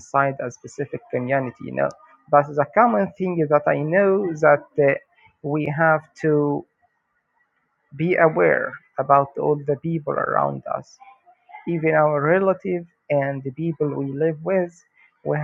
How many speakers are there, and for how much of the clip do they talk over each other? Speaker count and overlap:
1, no overlap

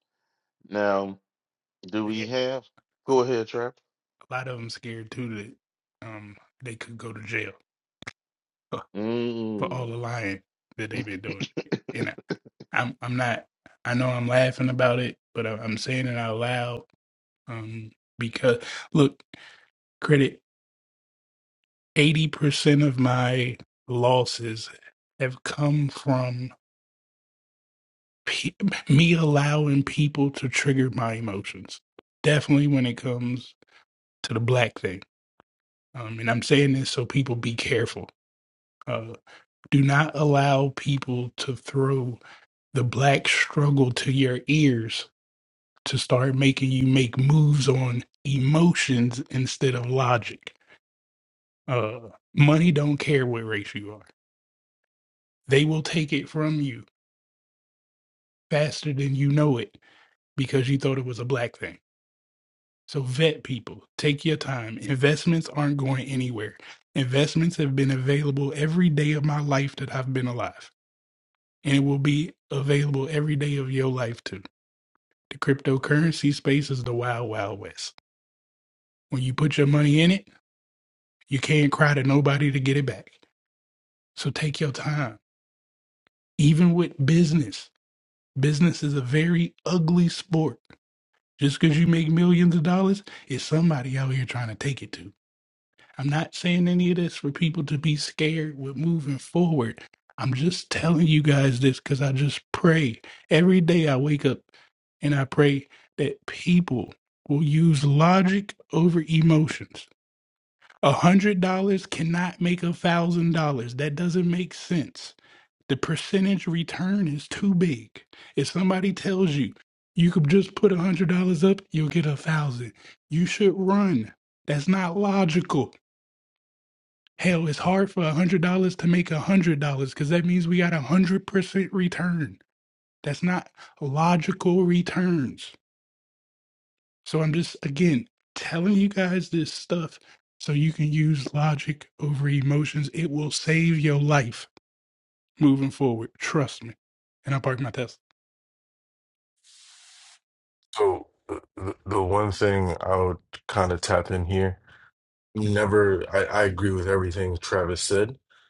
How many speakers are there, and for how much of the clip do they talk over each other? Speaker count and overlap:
3, under 1%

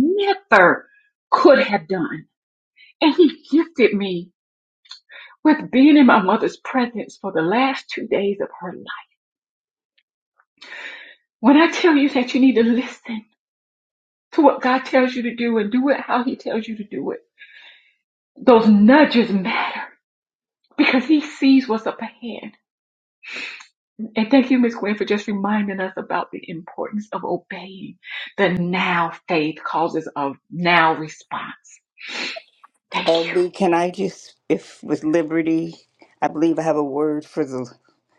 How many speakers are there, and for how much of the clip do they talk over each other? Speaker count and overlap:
2, about 1%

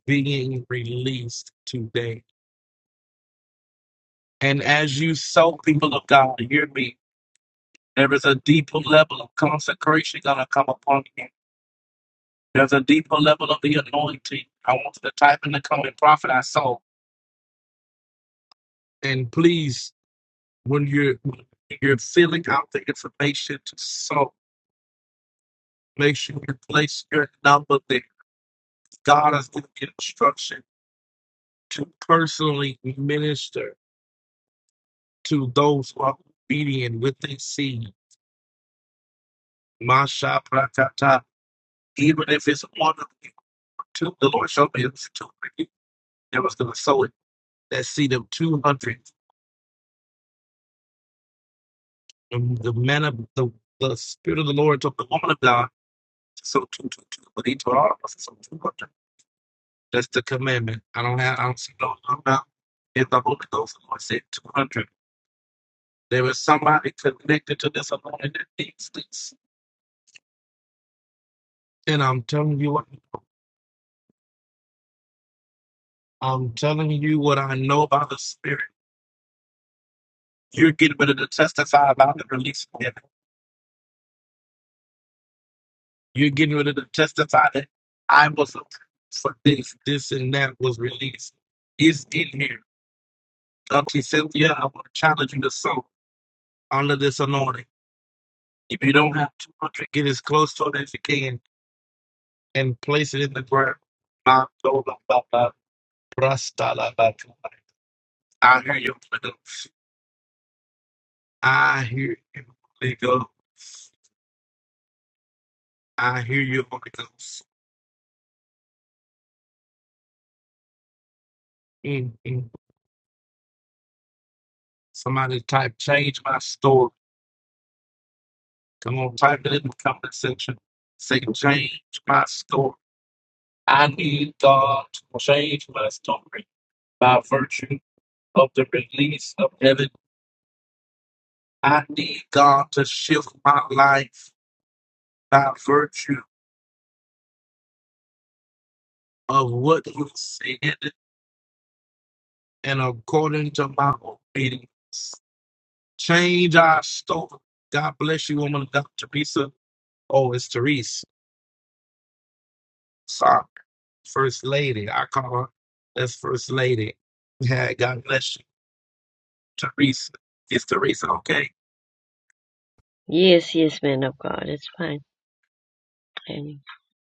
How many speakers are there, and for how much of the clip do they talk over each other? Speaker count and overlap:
2, no overlap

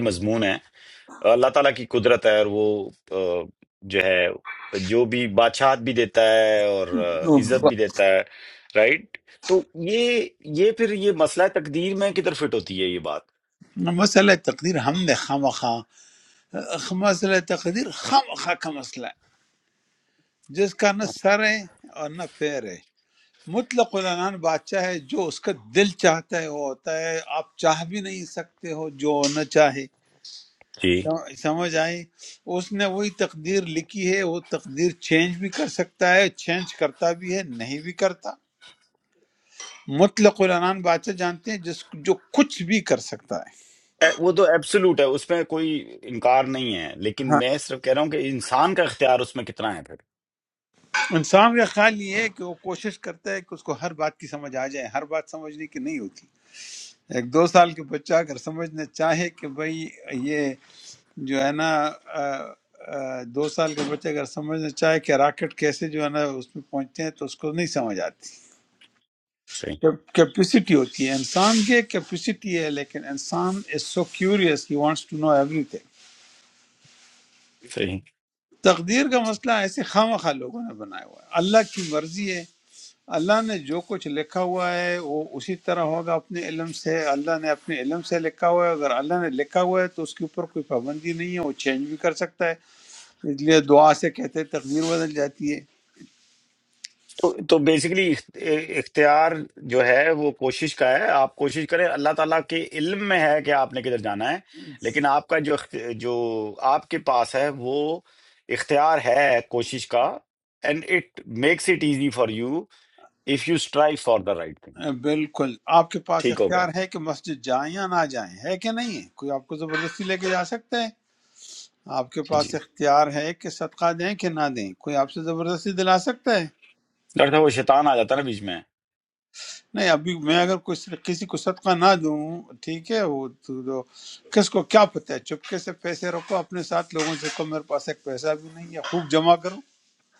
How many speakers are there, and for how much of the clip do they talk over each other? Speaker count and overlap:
2, about 1%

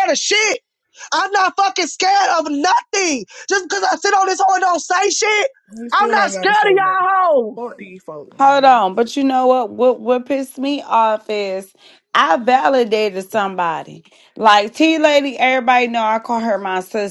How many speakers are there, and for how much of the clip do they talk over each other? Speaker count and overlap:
3, about 8%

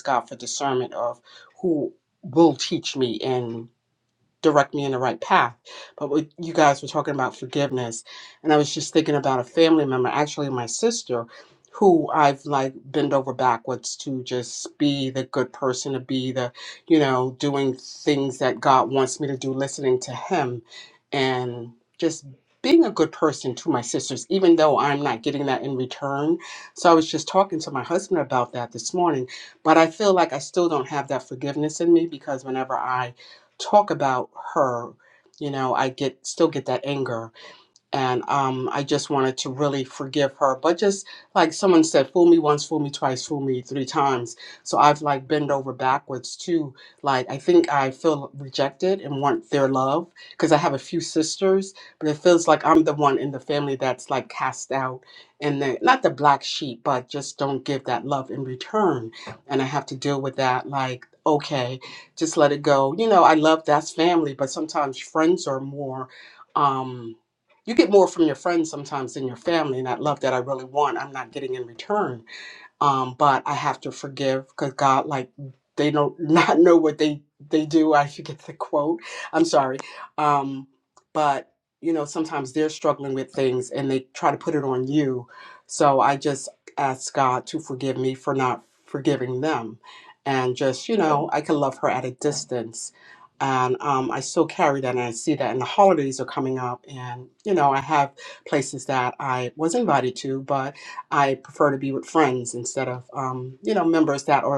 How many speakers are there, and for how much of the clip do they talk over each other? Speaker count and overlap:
1, no overlap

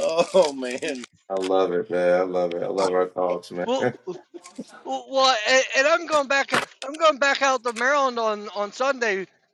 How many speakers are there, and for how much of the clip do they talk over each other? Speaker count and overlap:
3, under 1%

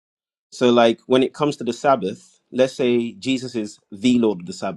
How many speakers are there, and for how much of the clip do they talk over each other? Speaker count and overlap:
1, no overlap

